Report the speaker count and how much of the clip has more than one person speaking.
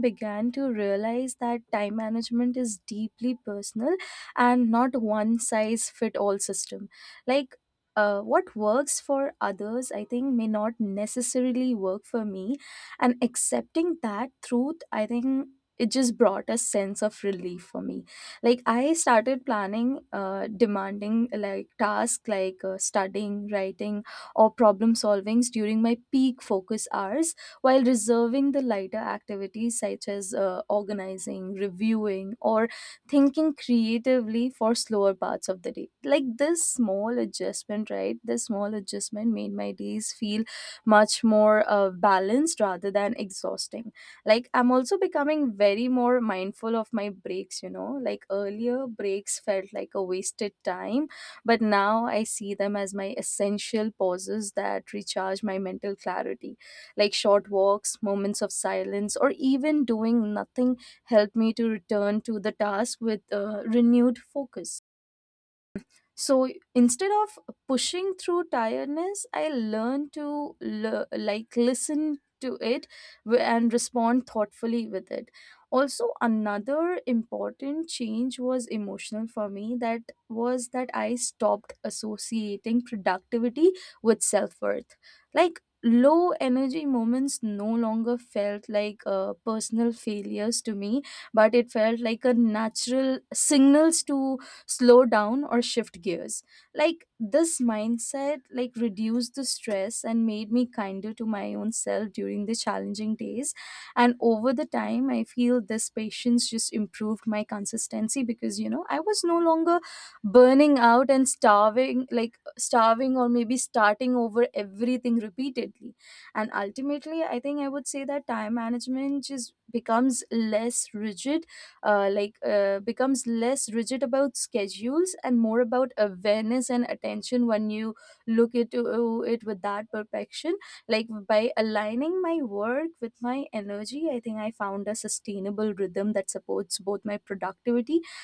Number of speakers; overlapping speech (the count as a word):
one, no overlap